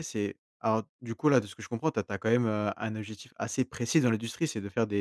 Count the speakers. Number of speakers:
1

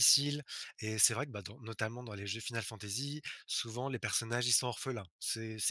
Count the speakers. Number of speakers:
1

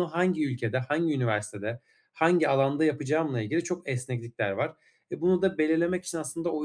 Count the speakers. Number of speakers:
1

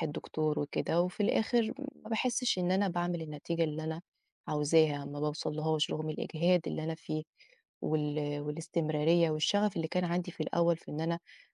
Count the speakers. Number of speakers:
1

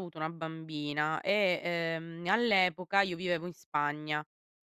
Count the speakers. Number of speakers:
1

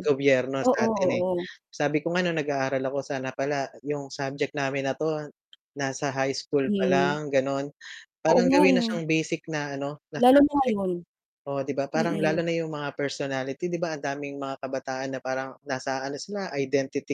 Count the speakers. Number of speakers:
2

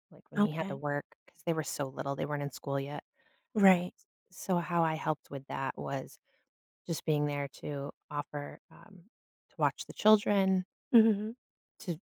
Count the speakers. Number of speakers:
2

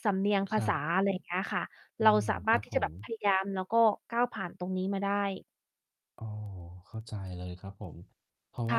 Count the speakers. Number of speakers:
2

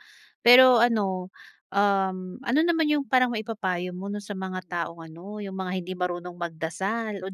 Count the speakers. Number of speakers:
1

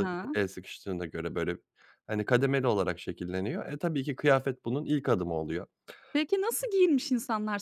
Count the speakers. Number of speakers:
2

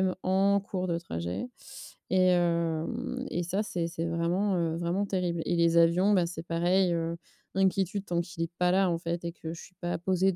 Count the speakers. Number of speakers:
1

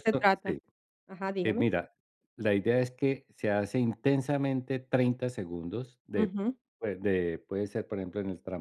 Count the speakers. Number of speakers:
2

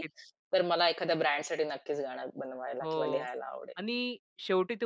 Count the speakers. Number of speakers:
2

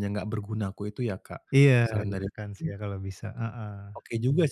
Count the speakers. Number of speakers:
2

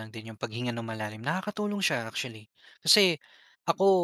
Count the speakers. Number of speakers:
1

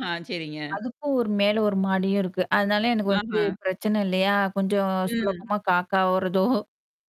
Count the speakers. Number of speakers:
2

